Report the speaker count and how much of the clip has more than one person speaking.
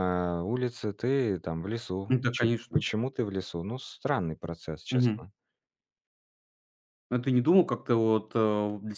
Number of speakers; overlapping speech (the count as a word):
two, about 11%